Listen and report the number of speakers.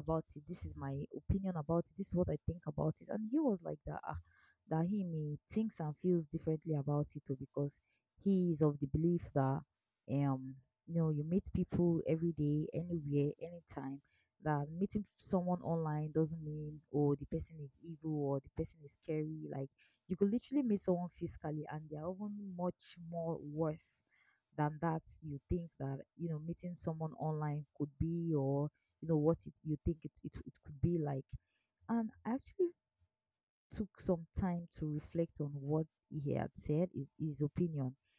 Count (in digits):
1